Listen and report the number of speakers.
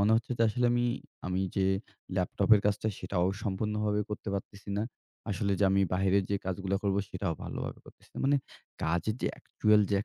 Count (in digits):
1